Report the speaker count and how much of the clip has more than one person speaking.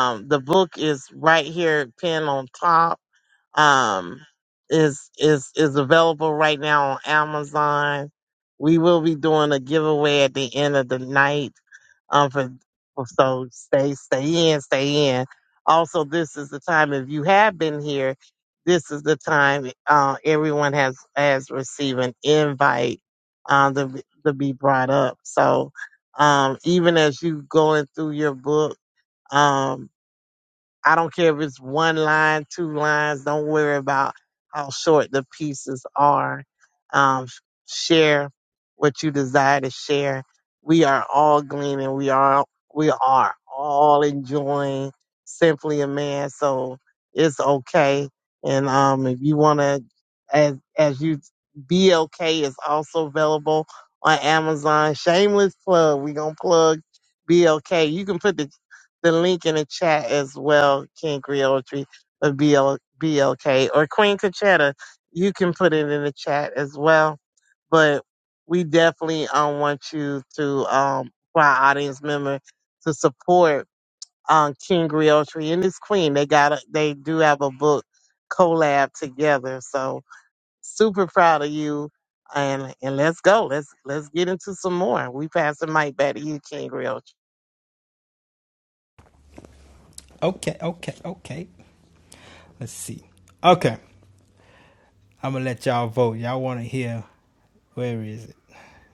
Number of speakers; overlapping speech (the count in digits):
2, no overlap